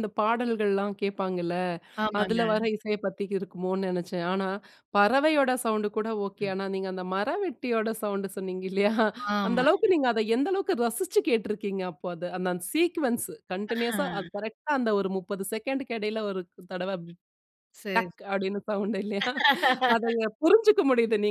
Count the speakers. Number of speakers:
two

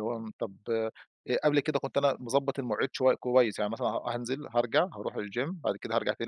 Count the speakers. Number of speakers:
one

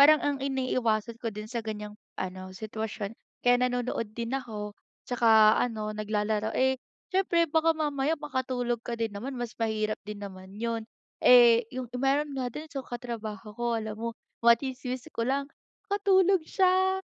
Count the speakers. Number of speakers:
one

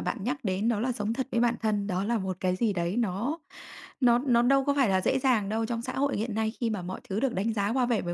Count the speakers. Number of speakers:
one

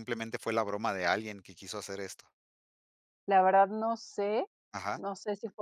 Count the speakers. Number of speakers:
two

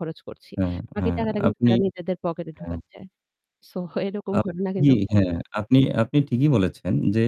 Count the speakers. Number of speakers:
two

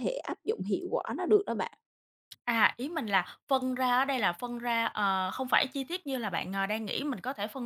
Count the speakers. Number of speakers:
two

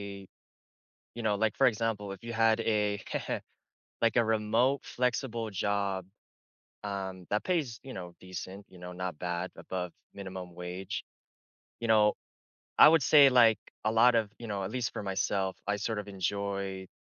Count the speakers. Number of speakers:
one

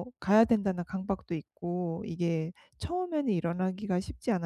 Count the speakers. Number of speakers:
one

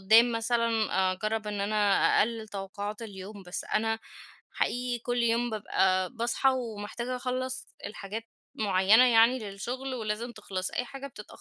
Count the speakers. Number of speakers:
one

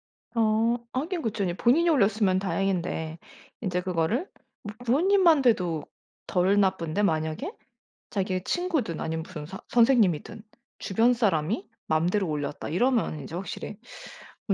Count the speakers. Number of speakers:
one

